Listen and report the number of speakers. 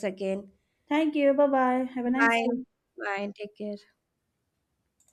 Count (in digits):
2